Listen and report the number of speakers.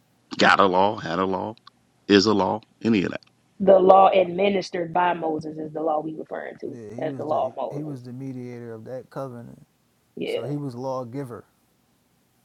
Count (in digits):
3